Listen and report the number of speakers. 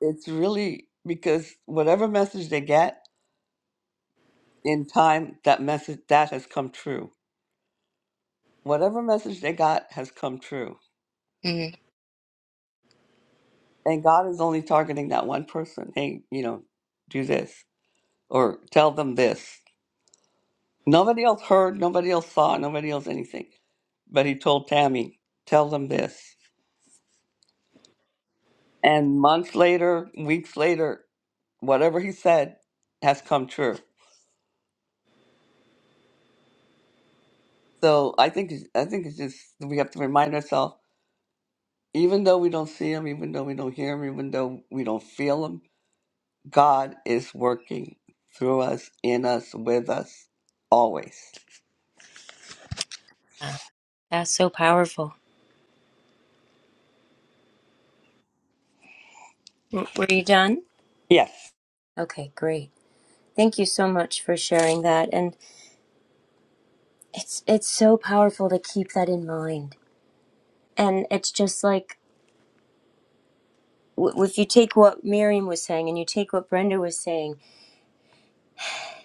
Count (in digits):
2